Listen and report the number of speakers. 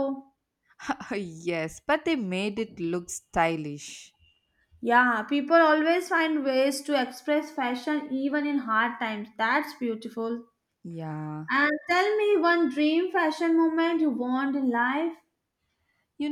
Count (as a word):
two